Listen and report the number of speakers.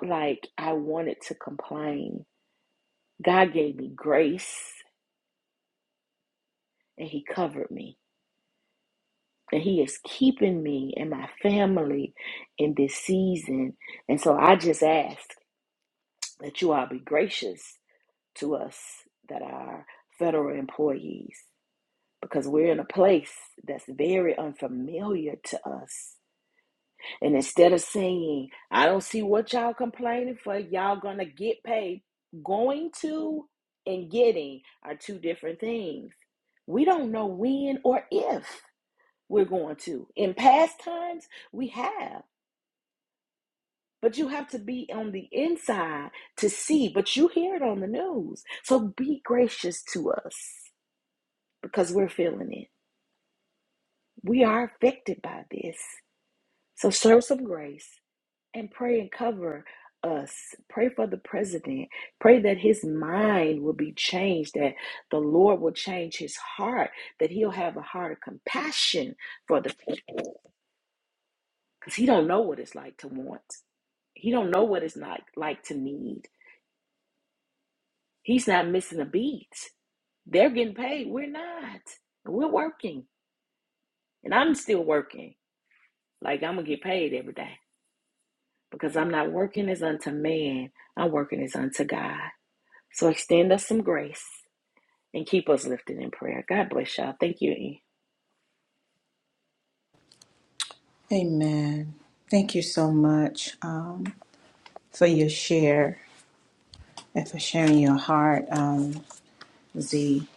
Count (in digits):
2